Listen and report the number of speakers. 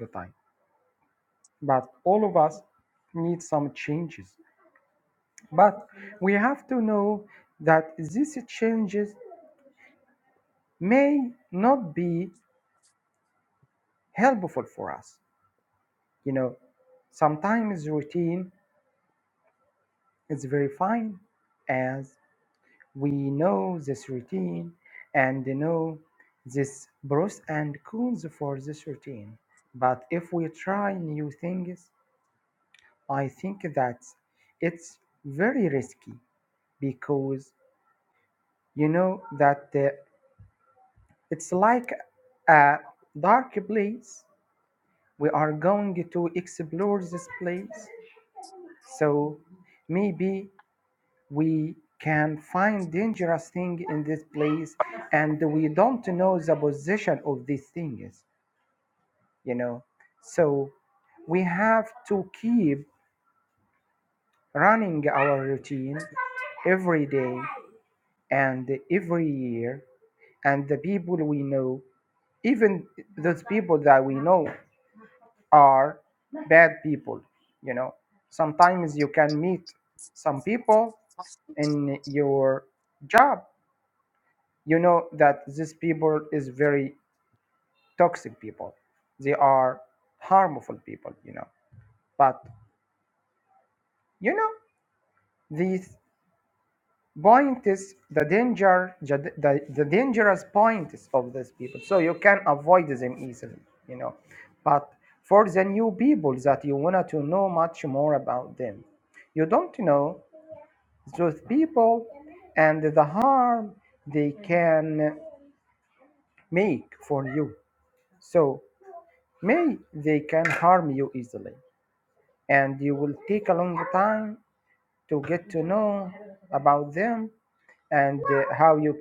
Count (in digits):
1